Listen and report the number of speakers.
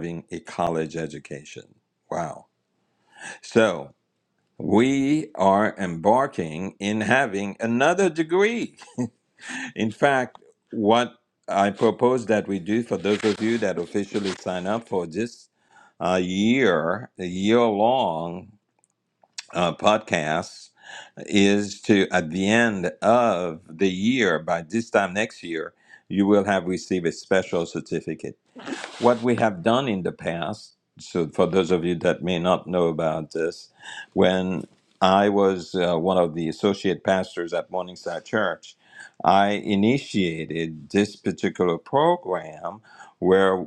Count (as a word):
one